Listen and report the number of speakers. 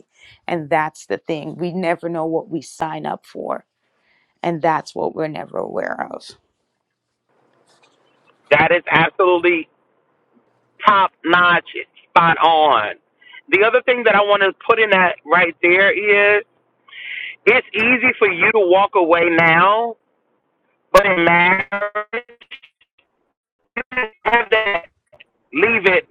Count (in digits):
2